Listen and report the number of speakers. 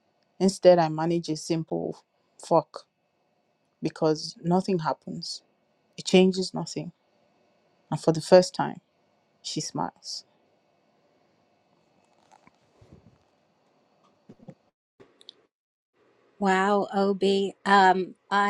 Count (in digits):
2